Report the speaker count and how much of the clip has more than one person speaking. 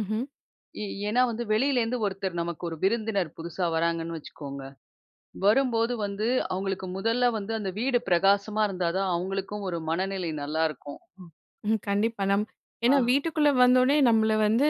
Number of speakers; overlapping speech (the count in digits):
2, about 2%